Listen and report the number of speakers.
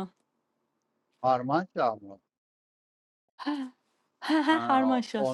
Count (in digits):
2